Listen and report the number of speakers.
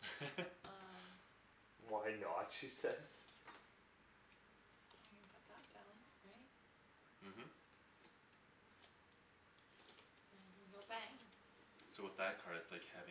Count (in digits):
3